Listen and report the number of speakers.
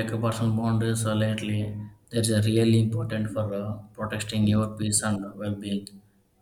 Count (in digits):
1